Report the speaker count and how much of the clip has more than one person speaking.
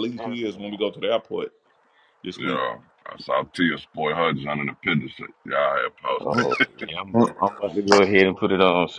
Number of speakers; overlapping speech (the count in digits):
3, about 14%